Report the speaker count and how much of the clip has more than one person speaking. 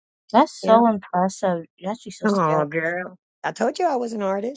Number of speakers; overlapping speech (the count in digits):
2, about 14%